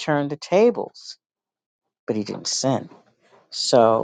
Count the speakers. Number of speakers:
one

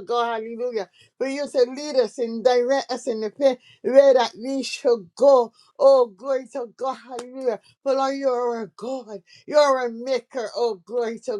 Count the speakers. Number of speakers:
one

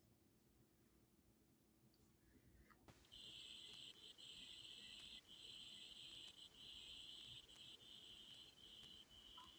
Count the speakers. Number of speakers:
zero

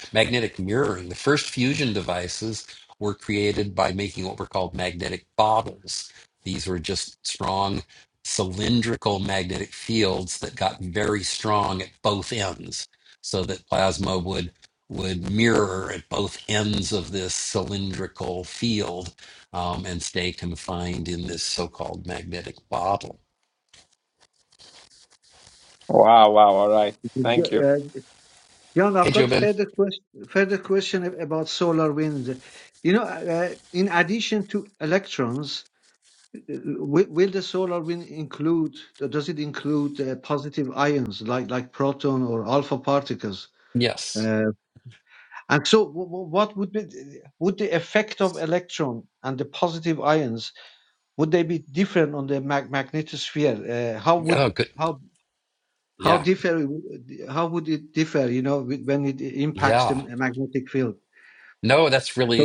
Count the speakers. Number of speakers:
three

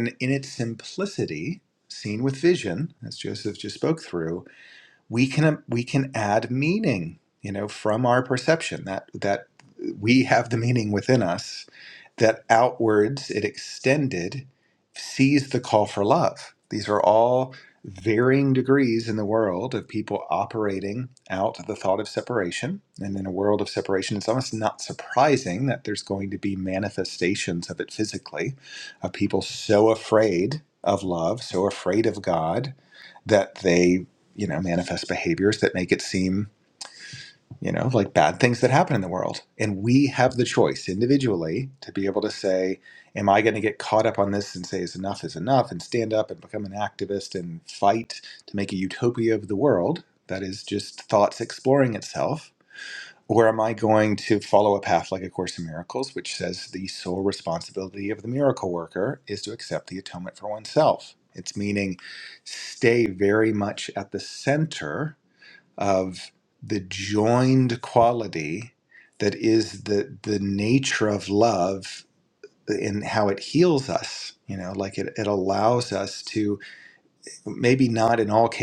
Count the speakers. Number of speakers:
one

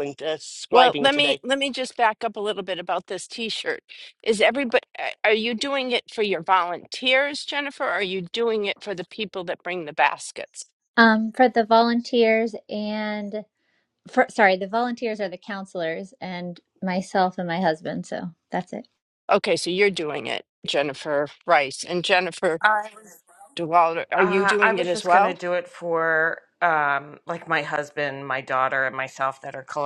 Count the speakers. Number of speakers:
four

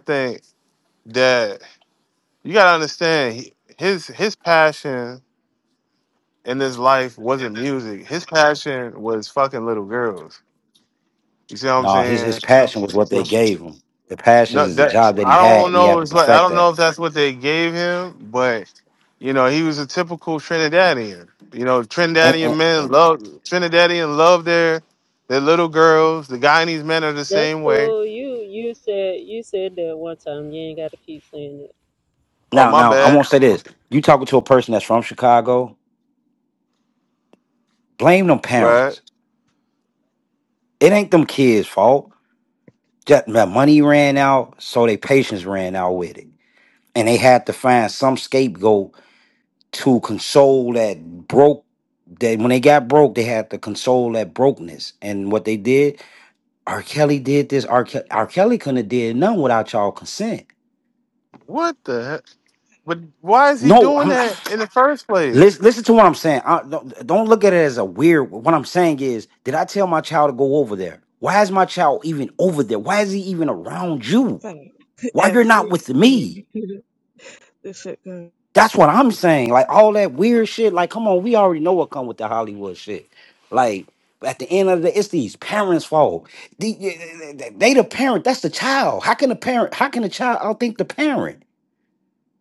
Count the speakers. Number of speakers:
four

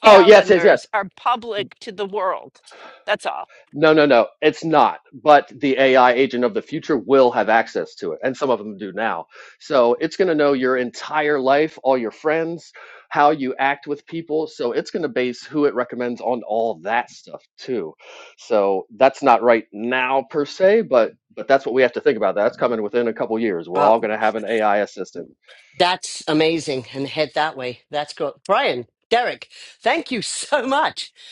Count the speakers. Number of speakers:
three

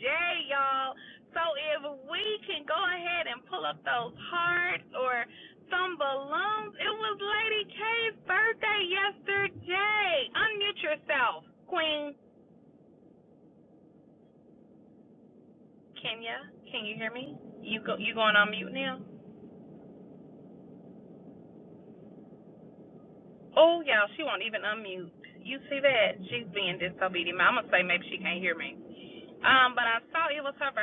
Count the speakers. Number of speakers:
one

